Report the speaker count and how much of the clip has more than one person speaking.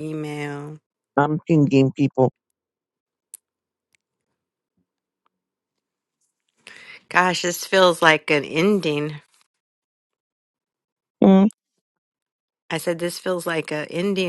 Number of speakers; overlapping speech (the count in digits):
2, no overlap